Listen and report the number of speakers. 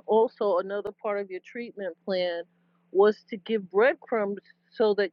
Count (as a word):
one